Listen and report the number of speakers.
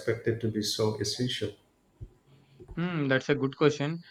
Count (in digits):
2